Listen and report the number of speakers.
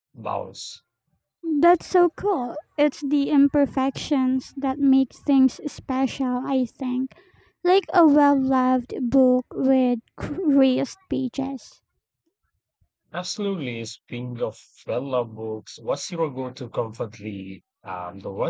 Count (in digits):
2